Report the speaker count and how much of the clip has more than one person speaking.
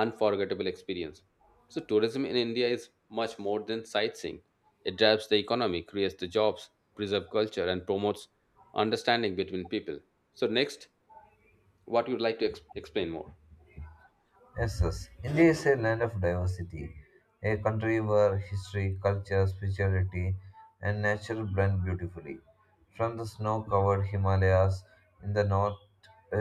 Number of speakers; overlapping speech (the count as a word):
two, no overlap